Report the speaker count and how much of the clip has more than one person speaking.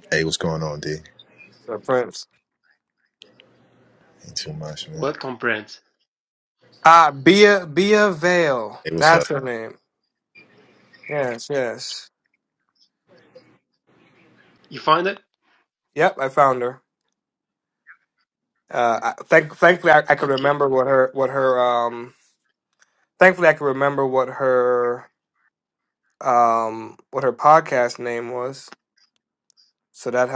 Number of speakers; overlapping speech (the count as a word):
three, about 3%